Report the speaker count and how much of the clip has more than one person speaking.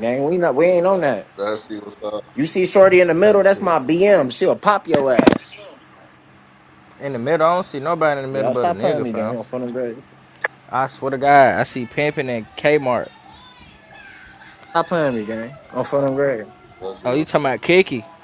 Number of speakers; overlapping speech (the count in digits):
3, about 9%